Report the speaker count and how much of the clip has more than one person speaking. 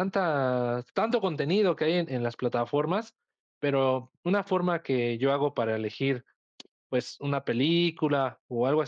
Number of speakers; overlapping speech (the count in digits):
1, no overlap